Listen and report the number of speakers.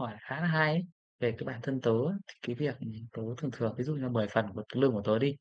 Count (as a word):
one